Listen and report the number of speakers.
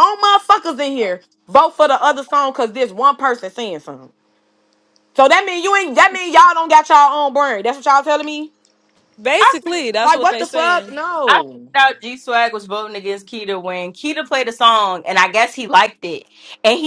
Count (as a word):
three